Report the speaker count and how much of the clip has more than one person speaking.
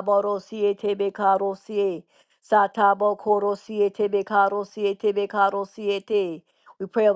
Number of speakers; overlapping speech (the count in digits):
1, no overlap